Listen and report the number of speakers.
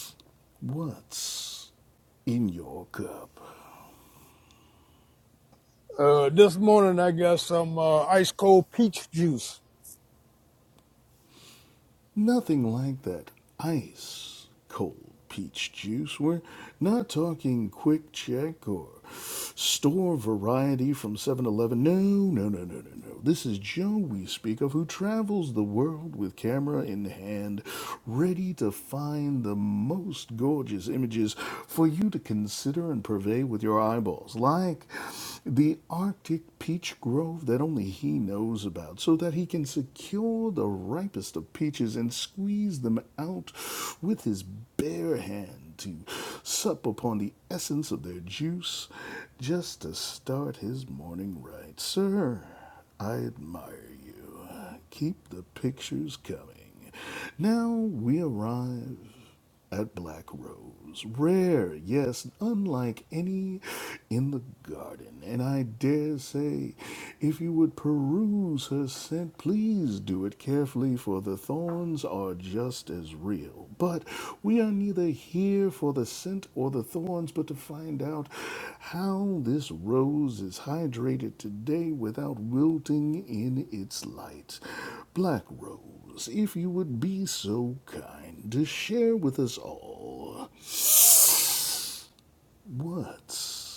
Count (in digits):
2